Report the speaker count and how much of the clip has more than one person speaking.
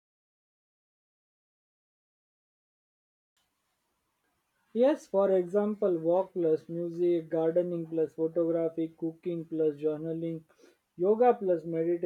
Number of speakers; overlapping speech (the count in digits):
1, no overlap